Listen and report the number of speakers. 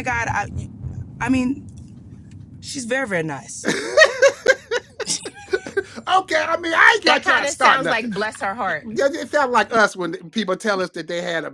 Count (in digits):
3